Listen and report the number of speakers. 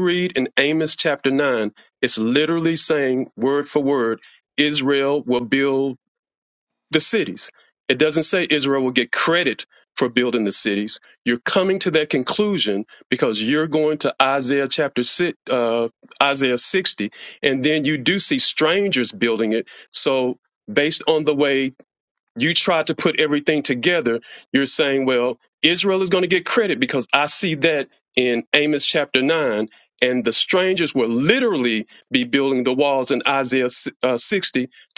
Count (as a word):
one